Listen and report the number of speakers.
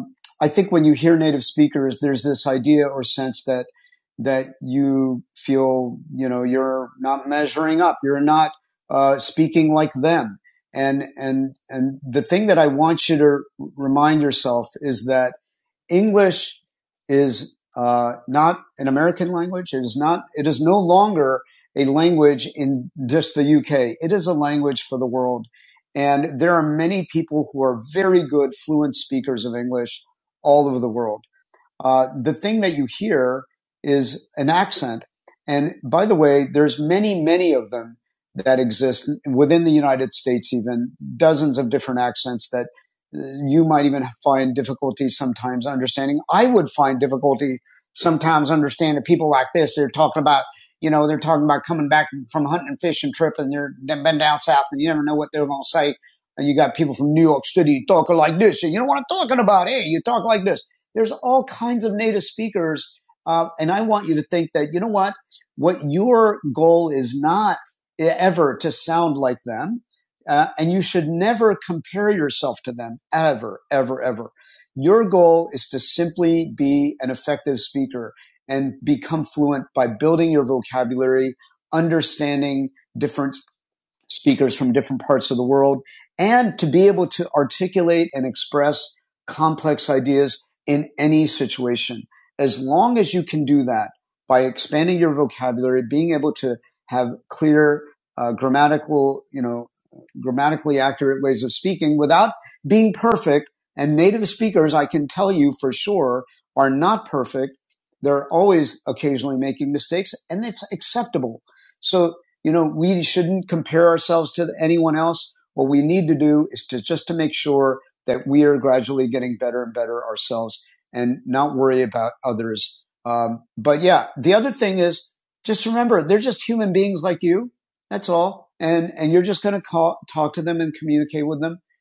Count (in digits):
1